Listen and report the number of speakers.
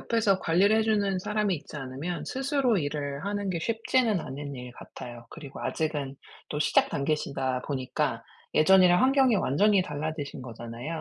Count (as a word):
one